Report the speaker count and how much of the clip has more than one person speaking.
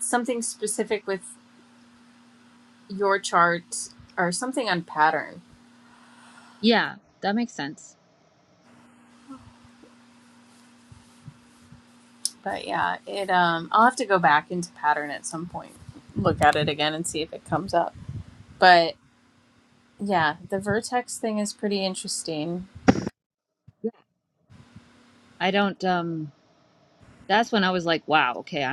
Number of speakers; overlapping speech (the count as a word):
two, no overlap